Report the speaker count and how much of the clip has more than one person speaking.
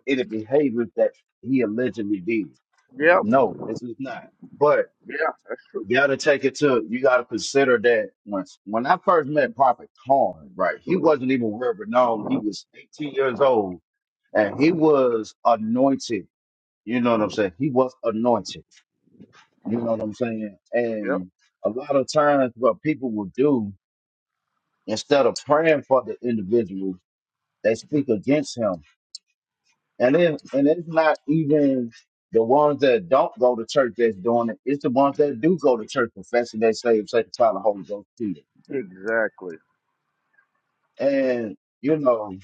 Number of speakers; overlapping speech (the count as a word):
two, under 1%